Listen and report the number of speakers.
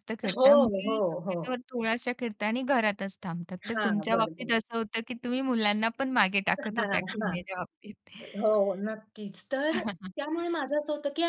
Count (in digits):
2